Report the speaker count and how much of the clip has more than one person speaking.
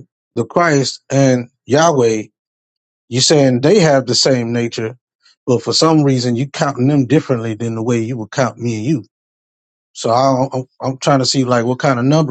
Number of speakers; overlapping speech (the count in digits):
1, no overlap